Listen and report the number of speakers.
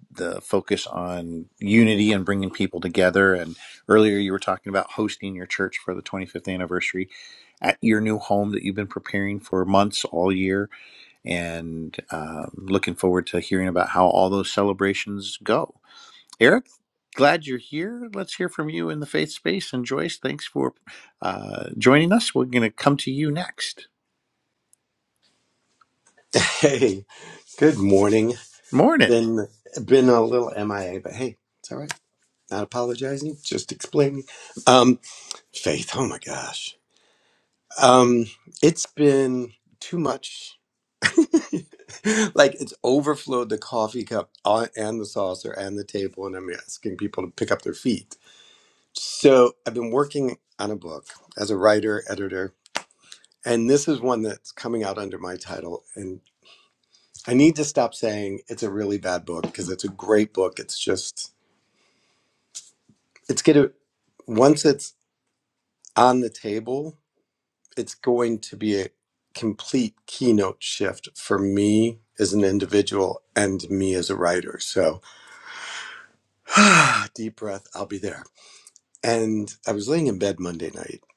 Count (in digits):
2